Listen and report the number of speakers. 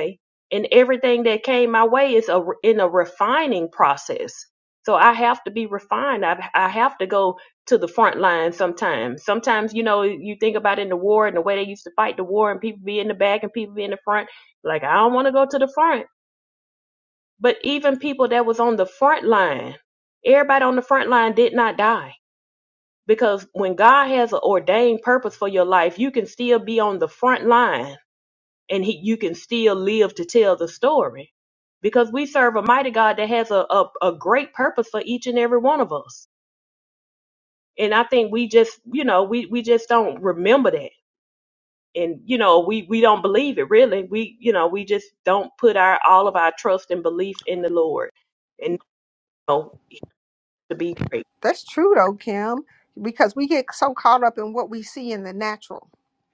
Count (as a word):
two